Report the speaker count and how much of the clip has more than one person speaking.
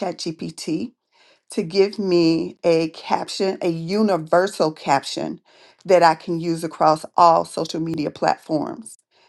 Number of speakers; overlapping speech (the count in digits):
1, no overlap